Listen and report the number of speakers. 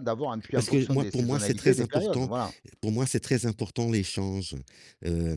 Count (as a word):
two